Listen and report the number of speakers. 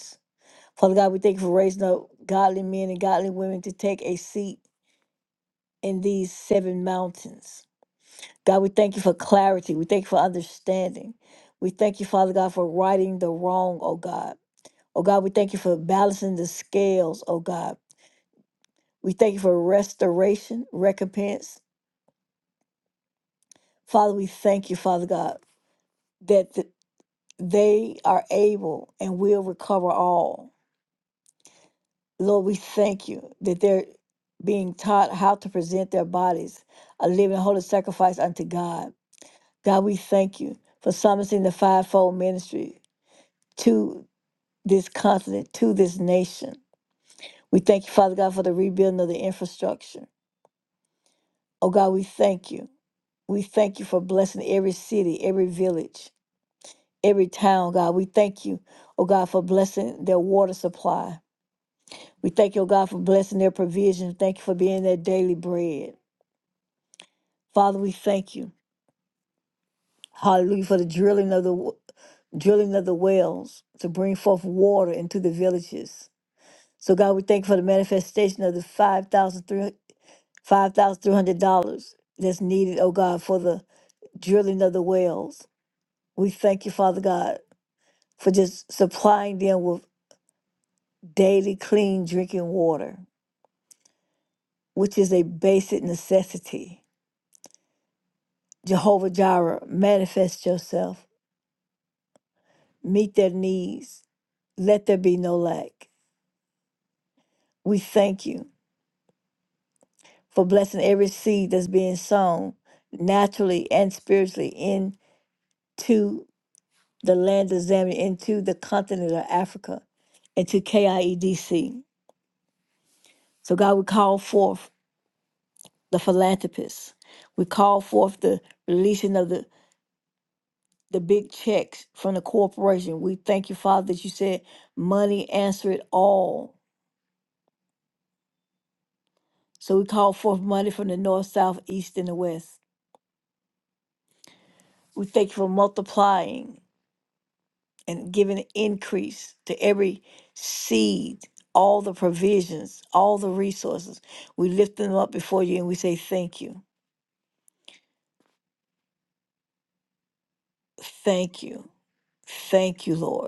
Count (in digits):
1